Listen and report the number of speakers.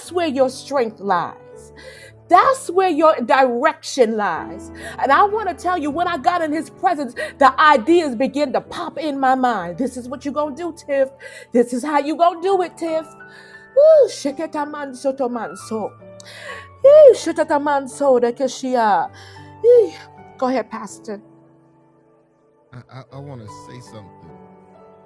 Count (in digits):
2